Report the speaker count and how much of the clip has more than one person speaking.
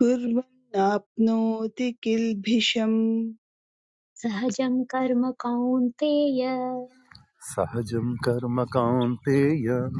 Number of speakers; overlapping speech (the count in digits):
3, no overlap